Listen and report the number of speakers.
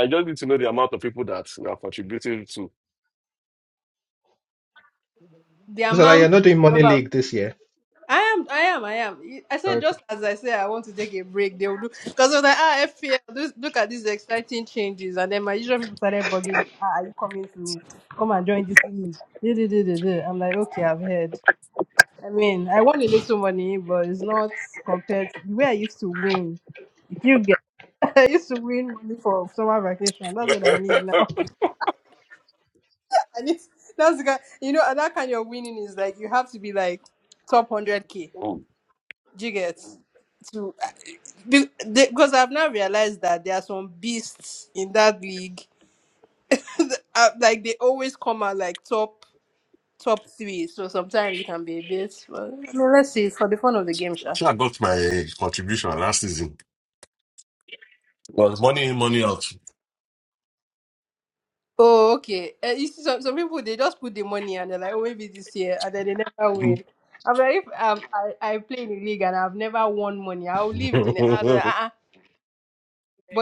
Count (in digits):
3